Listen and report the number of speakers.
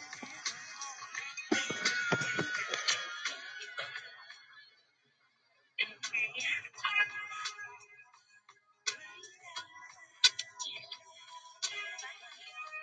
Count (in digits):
0